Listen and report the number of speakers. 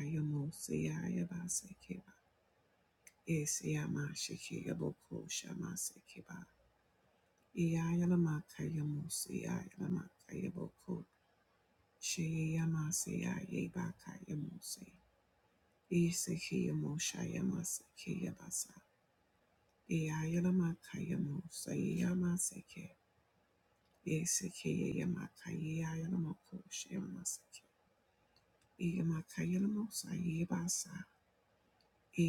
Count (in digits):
1